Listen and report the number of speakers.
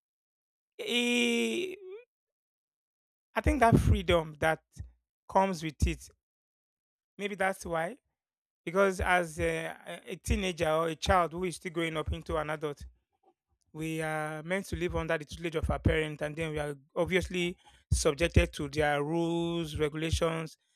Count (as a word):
one